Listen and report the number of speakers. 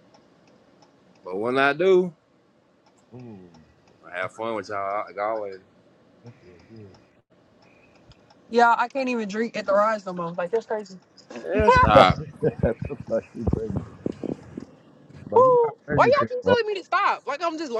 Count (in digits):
3